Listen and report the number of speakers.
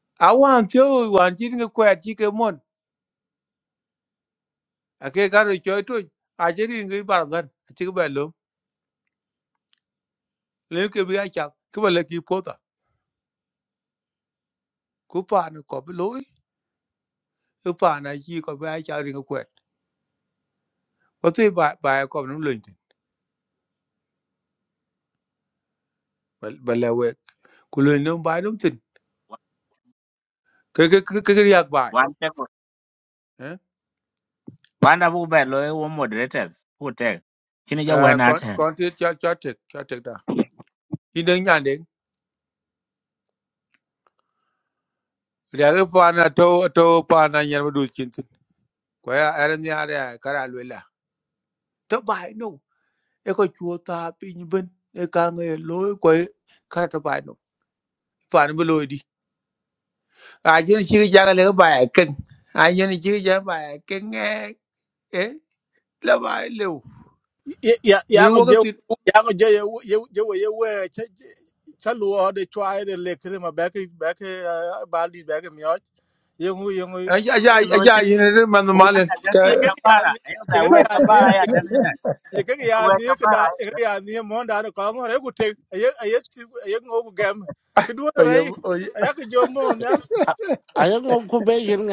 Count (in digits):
4